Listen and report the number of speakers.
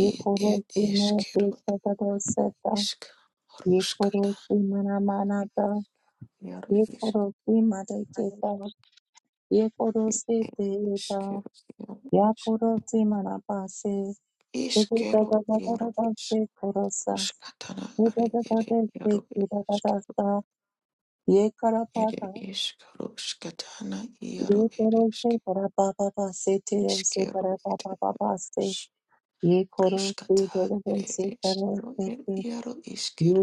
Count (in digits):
2